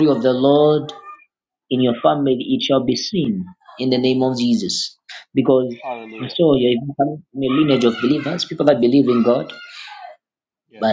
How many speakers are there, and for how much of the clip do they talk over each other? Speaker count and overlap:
two, about 5%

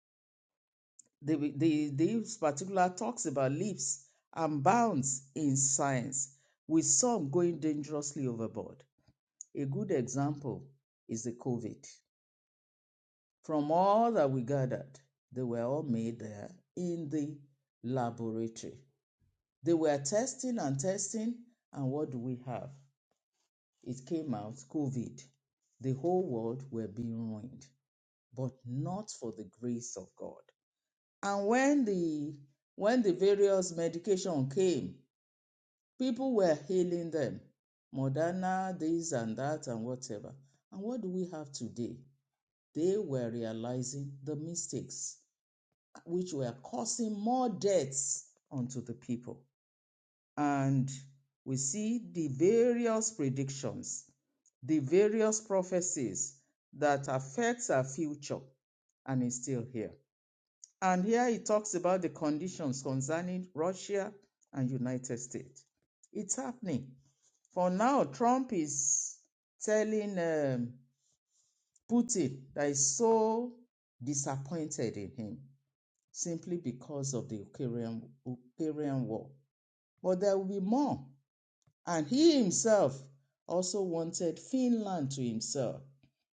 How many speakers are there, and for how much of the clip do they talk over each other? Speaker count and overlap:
one, no overlap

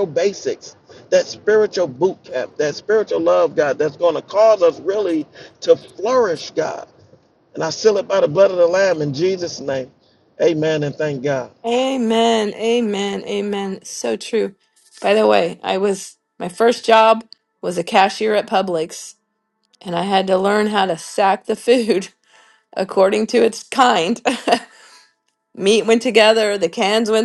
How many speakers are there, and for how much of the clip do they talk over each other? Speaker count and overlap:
two, no overlap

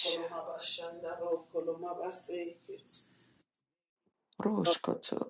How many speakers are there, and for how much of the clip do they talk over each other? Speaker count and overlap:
two, about 4%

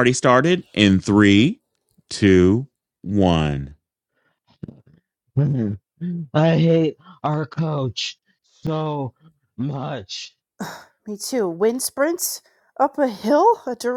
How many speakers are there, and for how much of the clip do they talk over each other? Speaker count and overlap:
three, no overlap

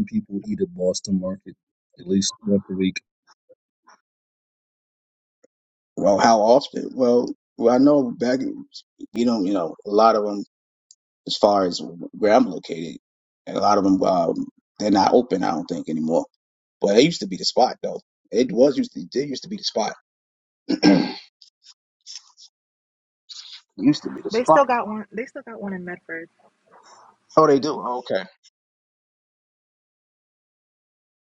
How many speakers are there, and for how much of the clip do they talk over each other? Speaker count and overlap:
three, about 1%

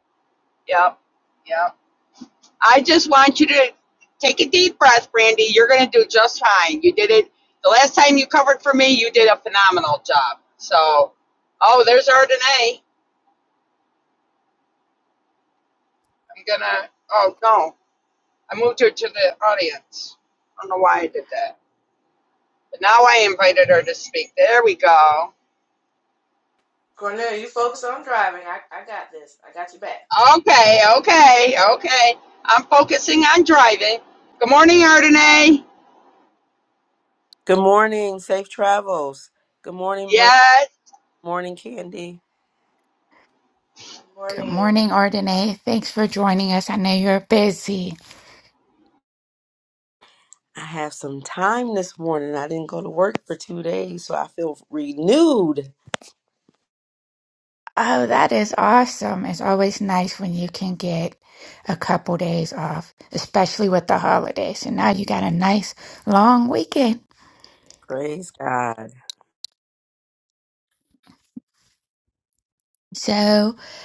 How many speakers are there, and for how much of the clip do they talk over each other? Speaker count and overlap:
four, about 1%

